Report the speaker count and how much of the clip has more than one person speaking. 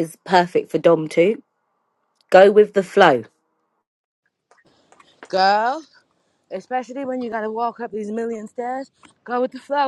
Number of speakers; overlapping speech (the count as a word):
two, no overlap